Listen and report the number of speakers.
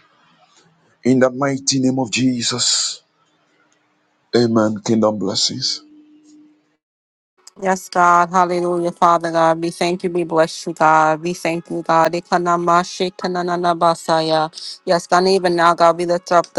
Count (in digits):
2